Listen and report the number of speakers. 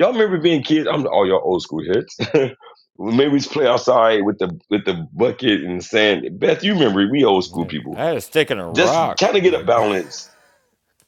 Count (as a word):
two